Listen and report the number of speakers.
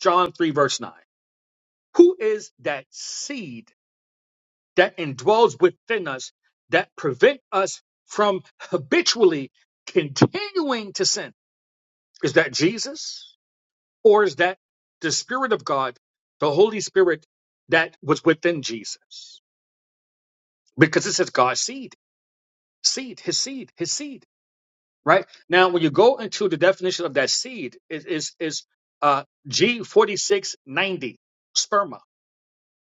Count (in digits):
1